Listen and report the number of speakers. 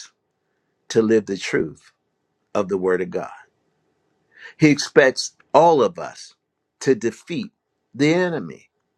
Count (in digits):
1